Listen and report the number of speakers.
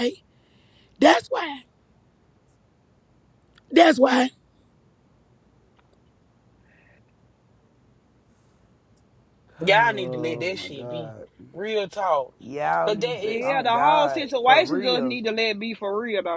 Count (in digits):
4